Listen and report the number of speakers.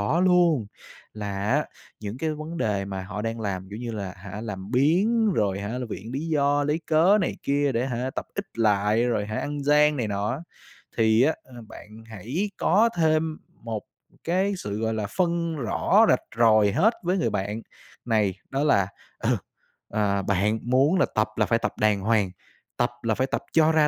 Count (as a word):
one